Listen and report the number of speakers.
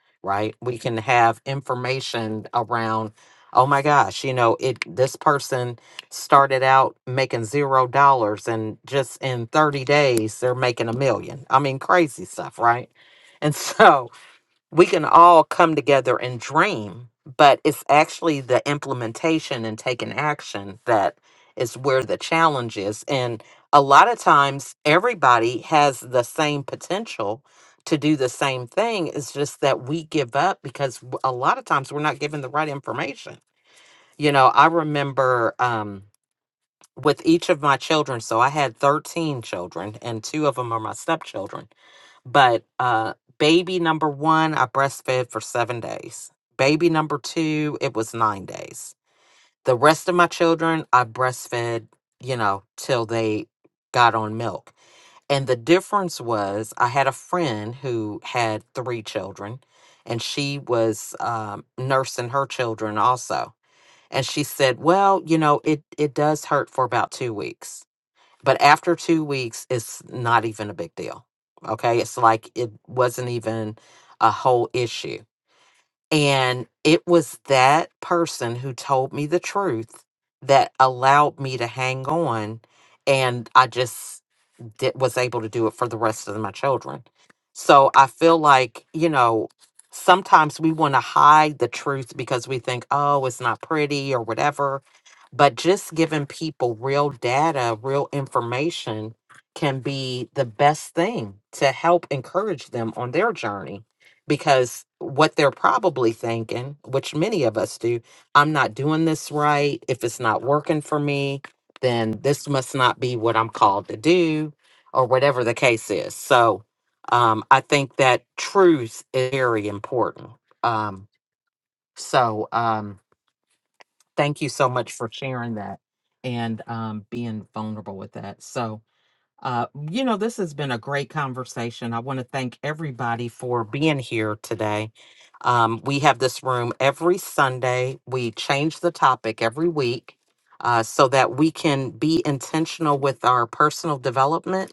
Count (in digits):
1